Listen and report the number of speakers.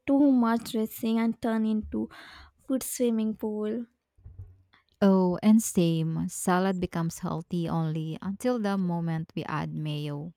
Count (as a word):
two